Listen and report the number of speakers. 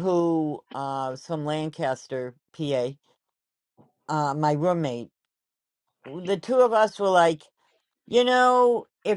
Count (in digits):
1